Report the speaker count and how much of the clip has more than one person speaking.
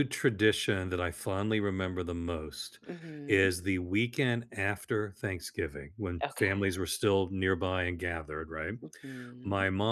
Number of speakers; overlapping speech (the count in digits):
2, about 8%